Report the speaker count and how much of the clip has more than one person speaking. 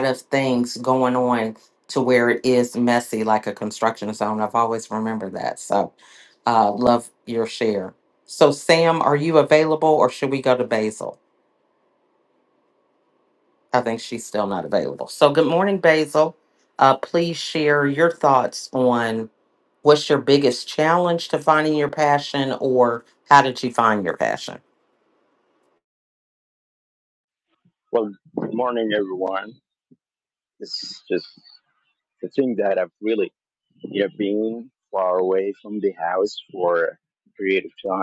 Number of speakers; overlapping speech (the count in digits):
2, no overlap